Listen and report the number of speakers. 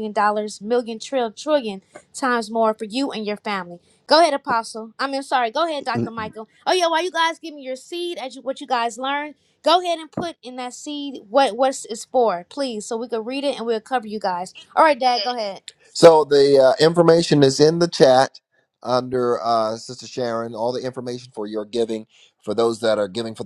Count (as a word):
two